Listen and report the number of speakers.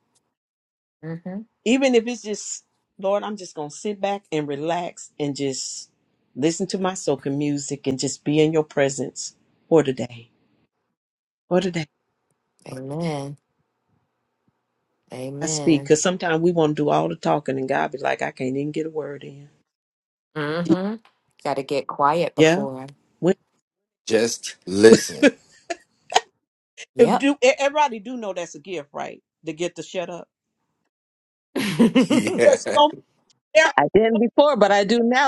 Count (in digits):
4